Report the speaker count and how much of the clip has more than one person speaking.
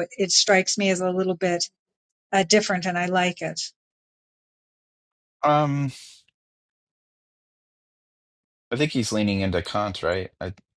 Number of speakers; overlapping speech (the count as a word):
two, no overlap